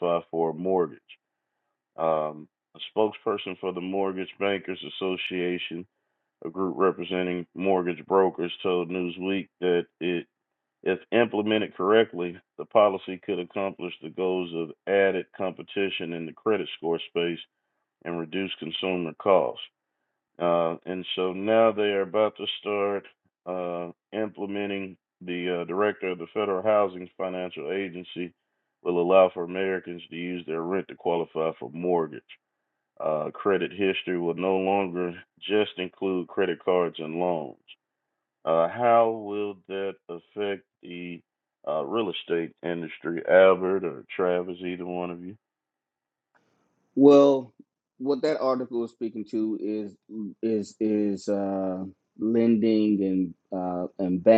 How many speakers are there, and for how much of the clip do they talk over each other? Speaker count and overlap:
two, no overlap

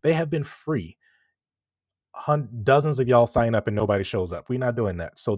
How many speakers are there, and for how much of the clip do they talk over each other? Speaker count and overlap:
one, no overlap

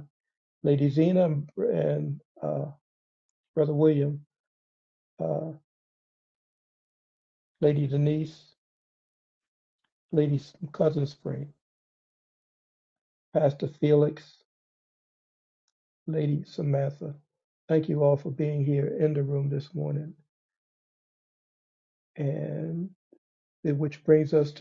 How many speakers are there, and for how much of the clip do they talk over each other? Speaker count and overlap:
one, no overlap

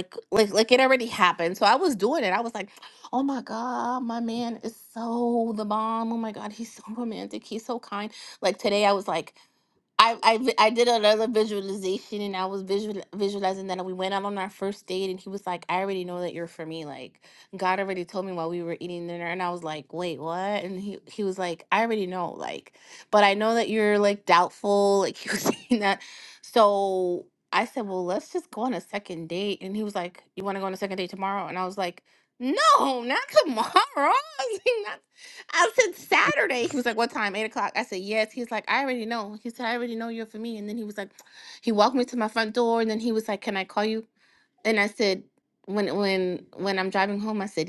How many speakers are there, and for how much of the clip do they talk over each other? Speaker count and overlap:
one, no overlap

